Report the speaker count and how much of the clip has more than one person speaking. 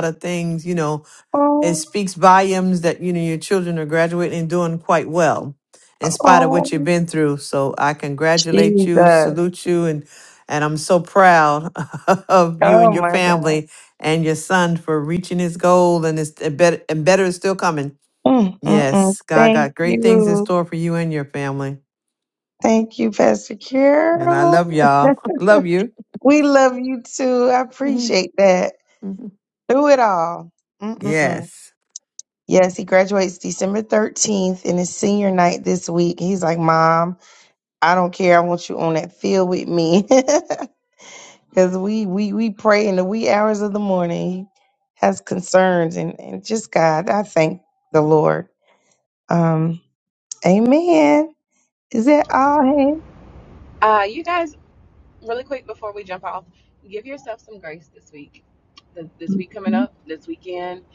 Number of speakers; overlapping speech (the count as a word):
three, about 8%